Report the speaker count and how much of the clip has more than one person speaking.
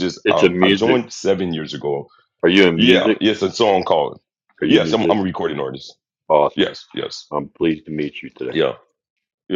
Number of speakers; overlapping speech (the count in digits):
2, about 20%